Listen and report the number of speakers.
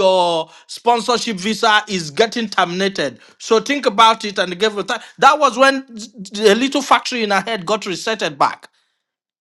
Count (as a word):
one